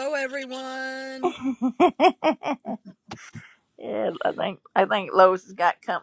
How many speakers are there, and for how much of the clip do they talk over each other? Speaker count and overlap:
two, no overlap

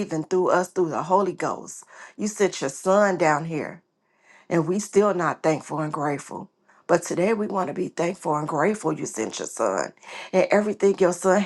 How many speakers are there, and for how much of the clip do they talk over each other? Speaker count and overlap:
one, no overlap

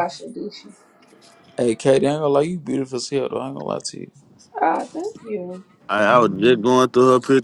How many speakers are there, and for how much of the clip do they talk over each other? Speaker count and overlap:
three, about 3%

